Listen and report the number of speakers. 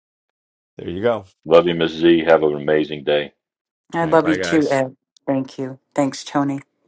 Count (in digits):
3